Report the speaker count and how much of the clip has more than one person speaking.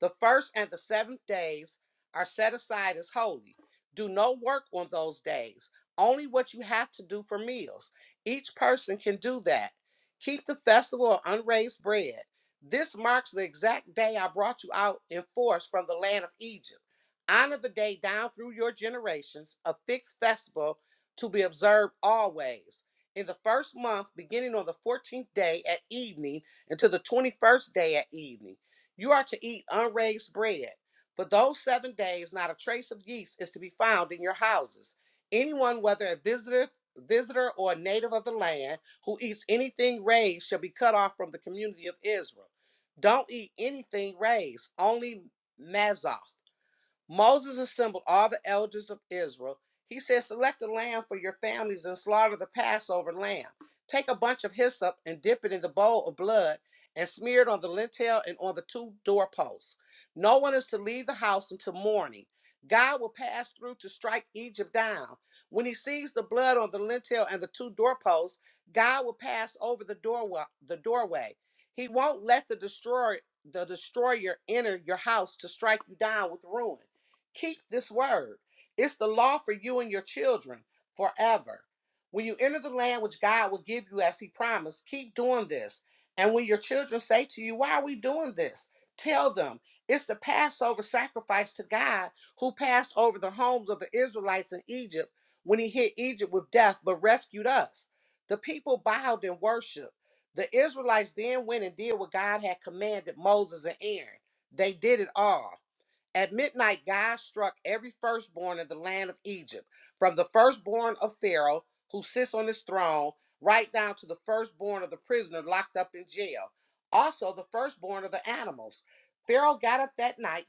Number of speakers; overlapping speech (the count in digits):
1, no overlap